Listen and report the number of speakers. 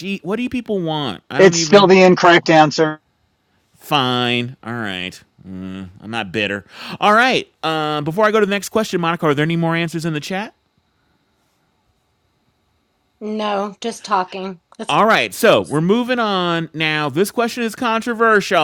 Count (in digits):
3